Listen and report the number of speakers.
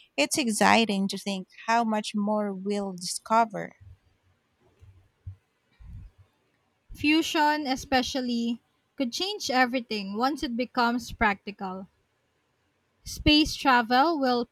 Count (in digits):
2